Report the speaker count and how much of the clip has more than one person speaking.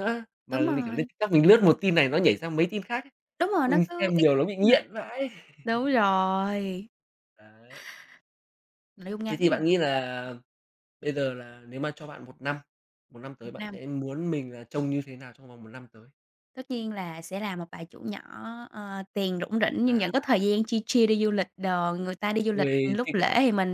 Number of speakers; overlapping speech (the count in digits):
2, about 13%